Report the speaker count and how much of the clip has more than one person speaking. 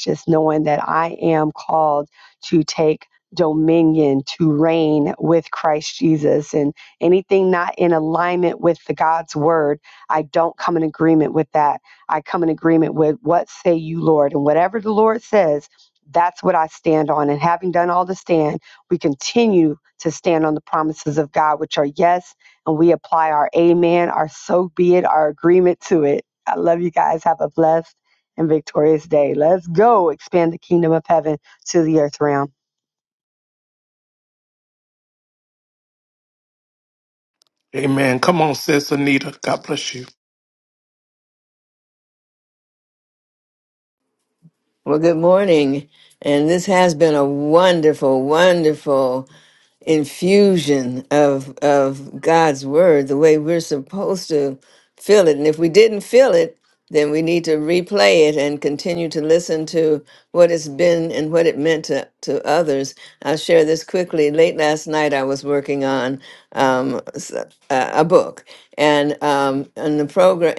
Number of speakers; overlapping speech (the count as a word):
three, no overlap